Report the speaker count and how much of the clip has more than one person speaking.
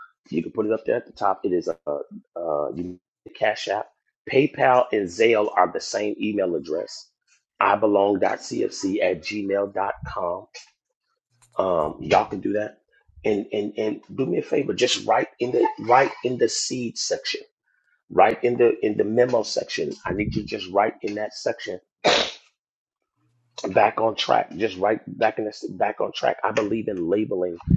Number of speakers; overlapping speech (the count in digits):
1, no overlap